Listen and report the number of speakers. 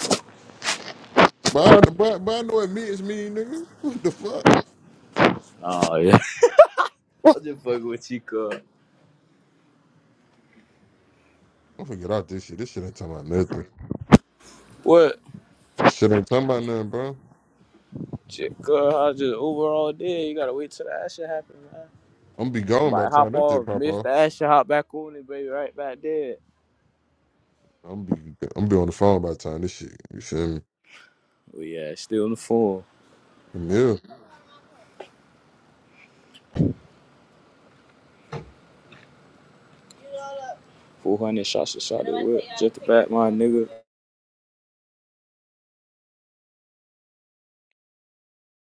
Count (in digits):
2